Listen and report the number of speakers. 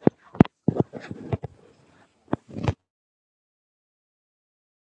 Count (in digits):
0